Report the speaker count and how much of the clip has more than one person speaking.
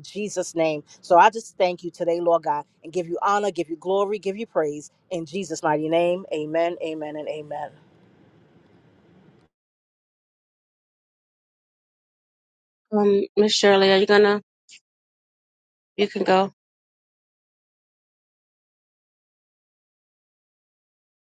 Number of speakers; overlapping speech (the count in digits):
2, no overlap